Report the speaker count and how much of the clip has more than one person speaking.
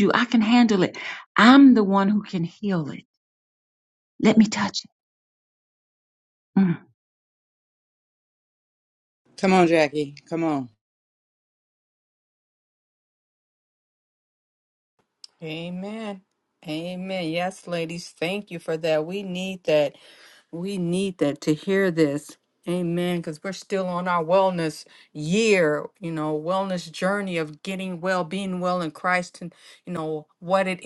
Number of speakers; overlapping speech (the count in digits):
3, no overlap